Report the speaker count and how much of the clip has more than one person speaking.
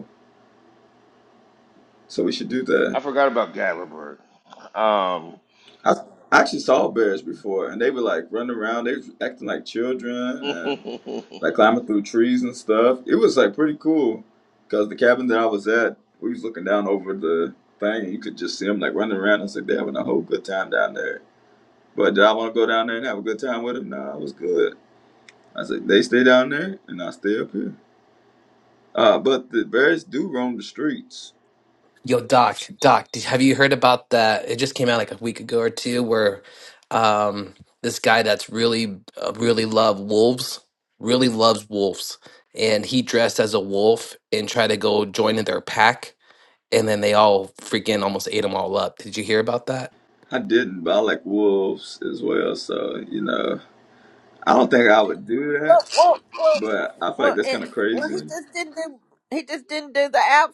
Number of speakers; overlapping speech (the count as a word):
four, about 3%